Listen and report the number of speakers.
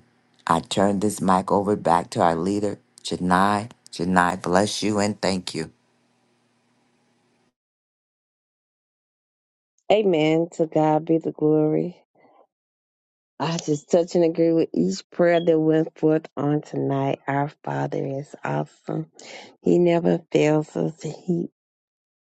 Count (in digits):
2